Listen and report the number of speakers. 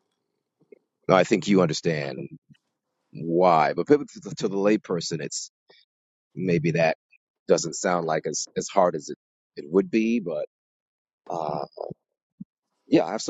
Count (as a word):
one